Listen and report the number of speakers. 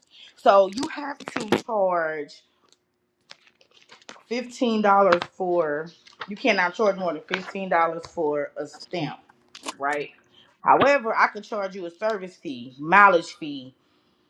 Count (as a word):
one